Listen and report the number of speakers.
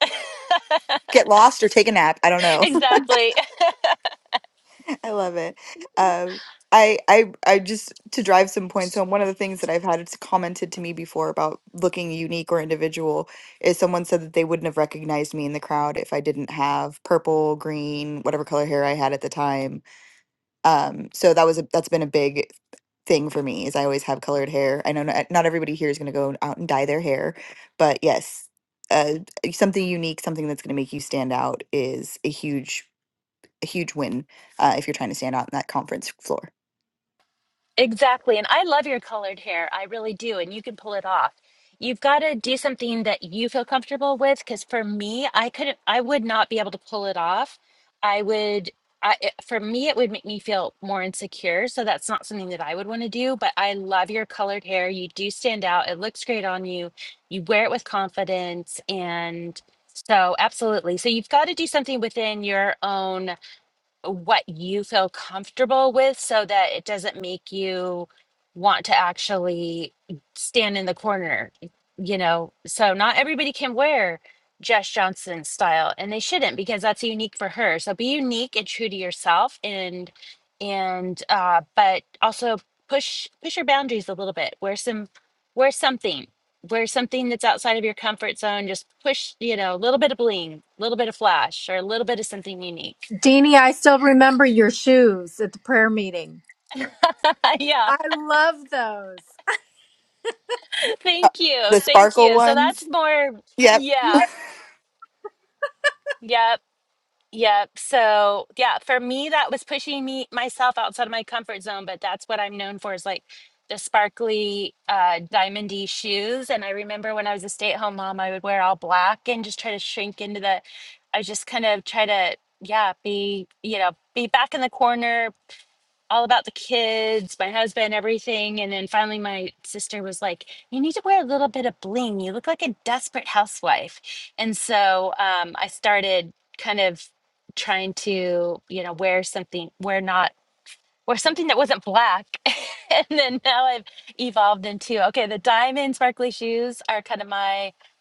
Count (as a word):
three